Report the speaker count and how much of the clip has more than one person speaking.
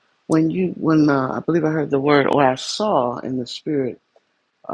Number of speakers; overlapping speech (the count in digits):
1, no overlap